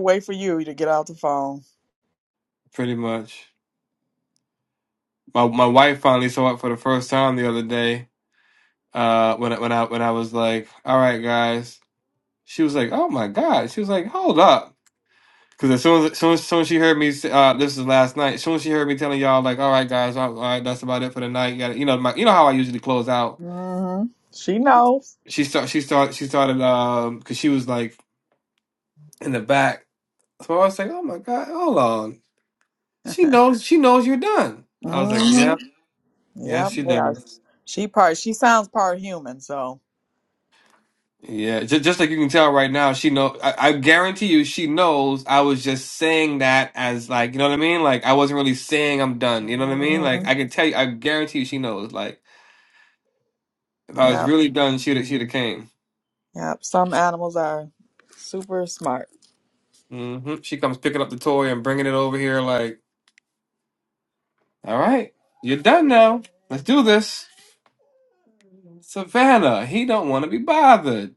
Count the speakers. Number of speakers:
2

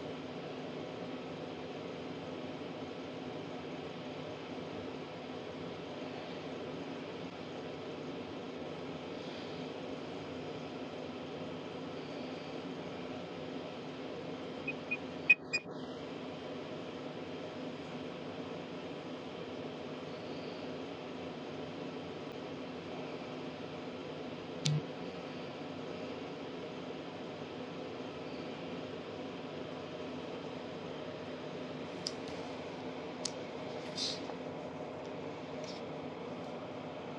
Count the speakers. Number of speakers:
0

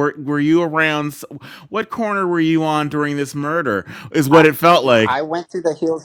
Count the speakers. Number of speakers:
2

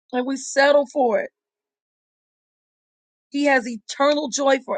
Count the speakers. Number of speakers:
1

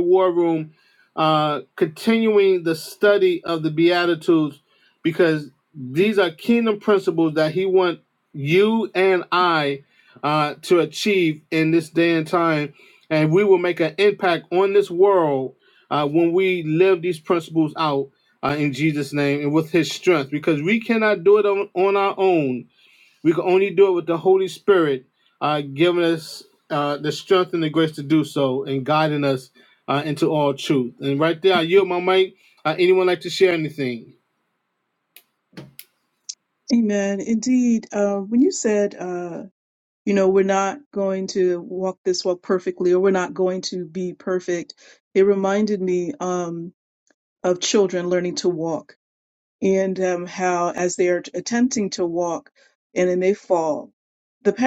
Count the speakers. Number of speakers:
2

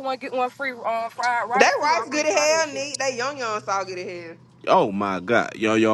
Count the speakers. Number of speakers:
3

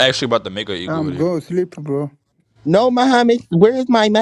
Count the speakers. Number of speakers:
3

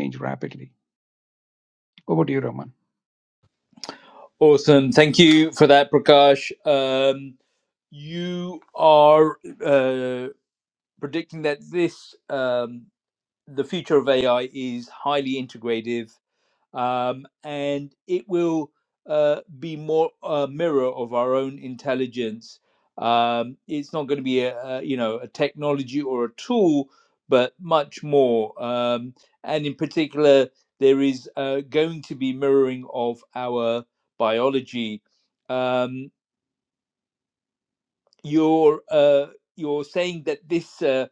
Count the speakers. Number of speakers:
2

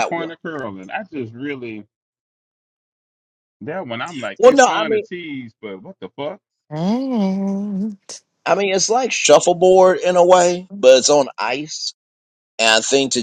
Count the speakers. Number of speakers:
3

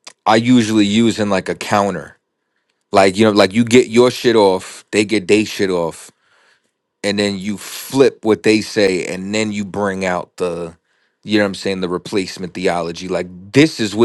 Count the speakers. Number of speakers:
1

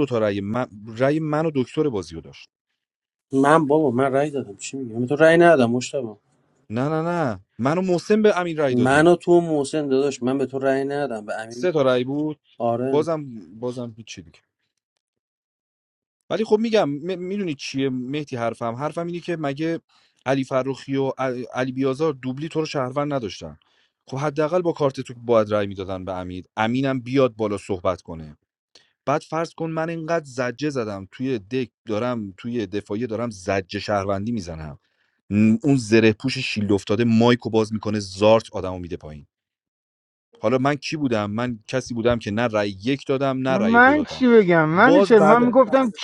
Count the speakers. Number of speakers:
3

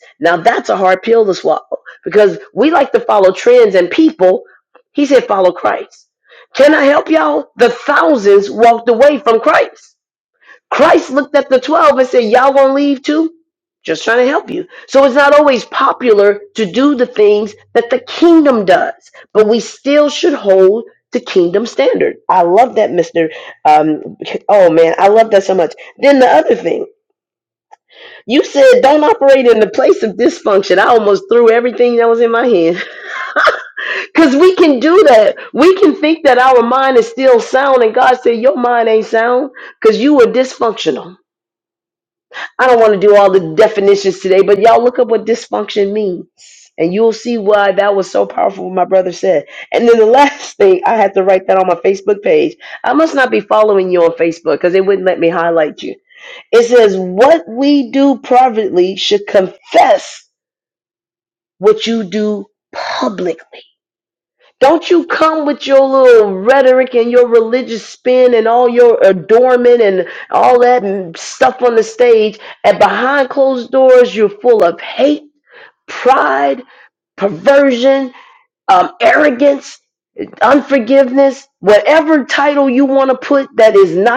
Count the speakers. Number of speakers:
1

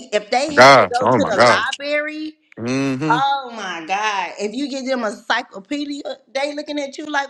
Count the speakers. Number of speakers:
2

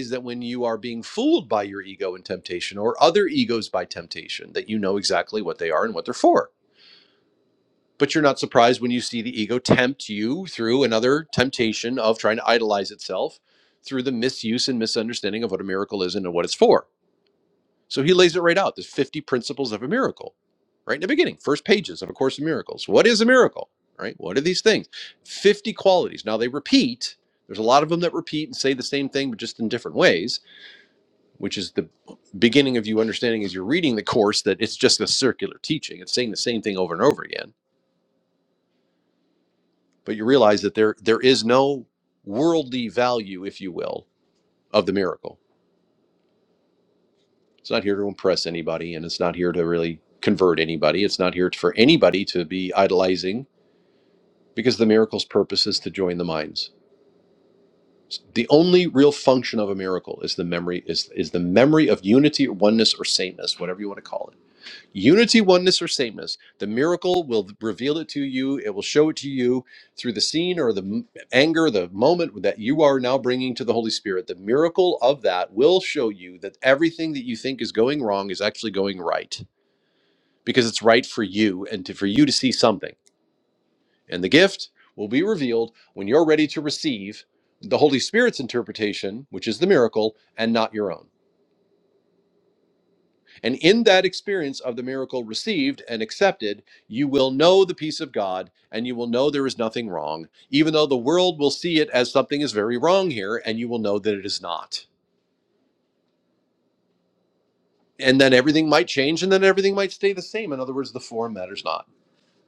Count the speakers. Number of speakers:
1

